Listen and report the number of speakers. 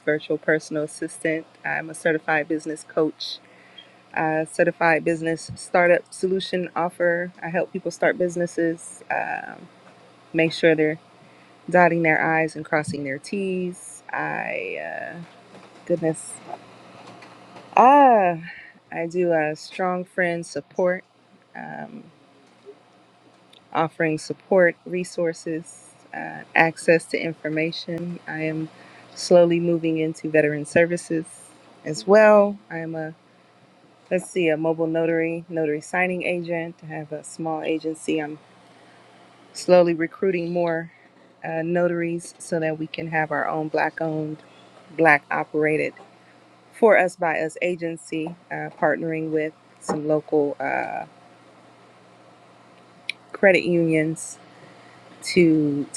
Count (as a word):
one